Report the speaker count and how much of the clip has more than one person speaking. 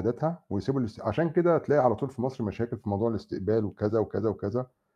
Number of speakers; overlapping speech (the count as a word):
one, no overlap